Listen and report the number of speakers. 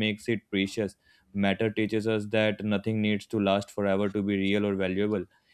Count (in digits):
1